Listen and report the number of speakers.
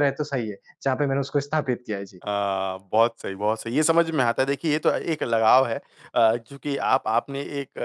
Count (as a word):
two